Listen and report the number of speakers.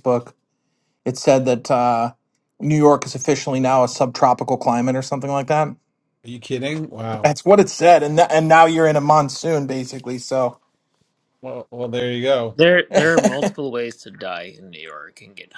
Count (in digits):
3